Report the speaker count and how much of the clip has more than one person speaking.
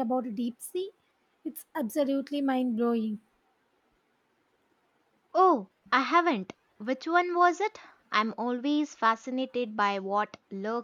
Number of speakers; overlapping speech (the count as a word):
two, no overlap